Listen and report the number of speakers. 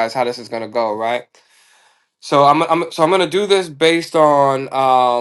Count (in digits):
1